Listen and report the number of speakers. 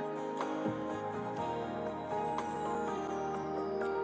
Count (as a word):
zero